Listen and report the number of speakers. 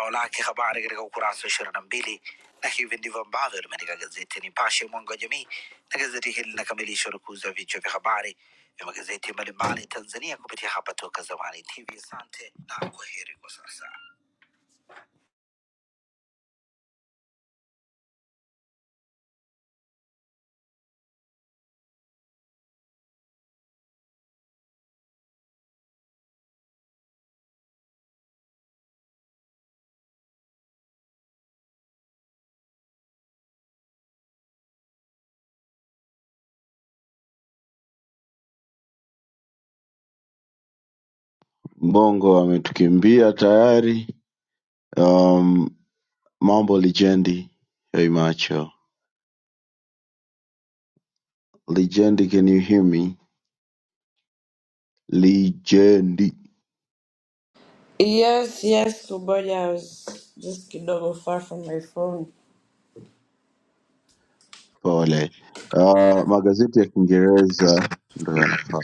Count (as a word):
three